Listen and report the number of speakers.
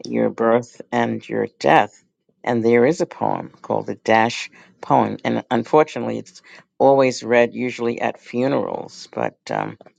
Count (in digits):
1